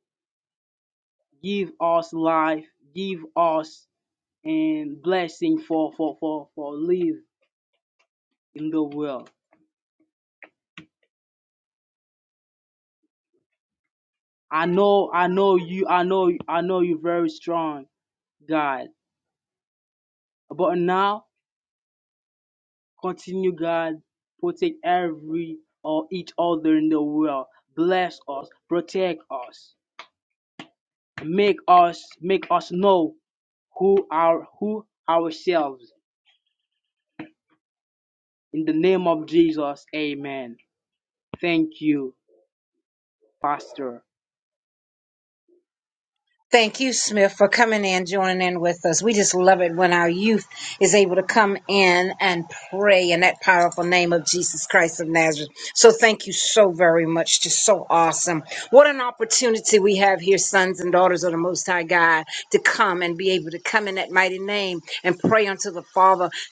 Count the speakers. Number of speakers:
2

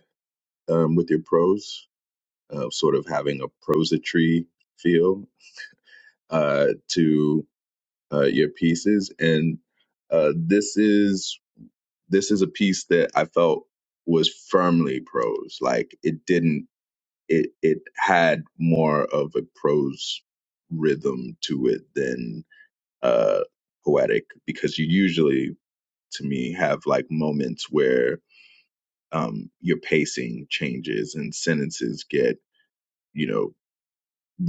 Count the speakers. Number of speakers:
1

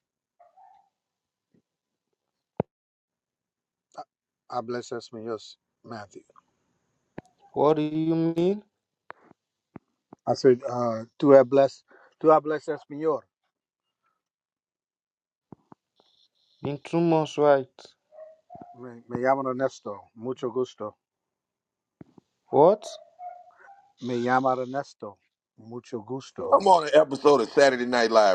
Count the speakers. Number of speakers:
3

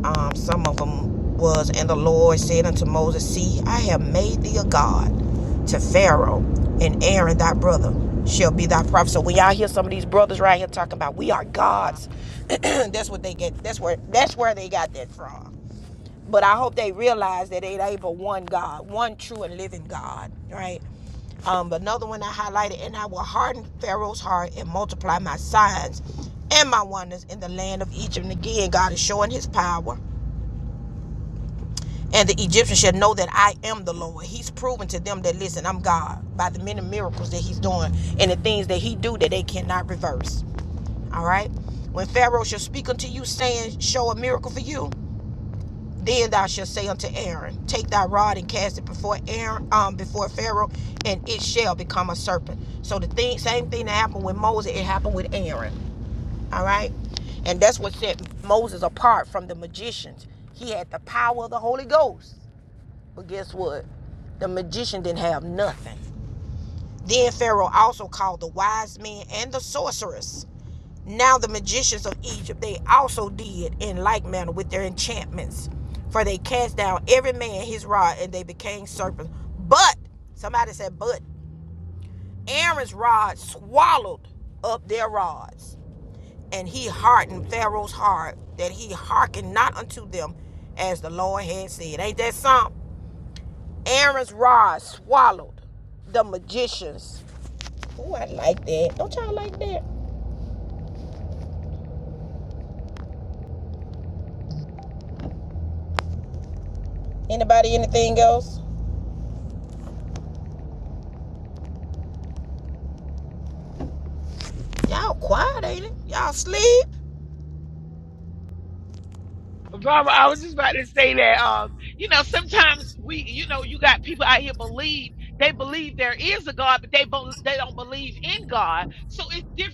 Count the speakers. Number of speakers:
2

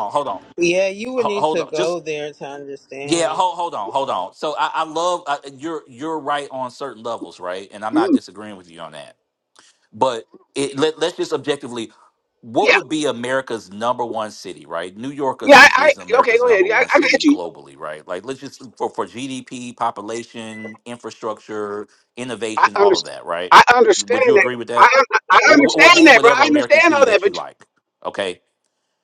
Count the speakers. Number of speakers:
3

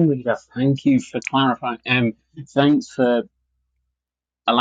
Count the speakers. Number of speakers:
1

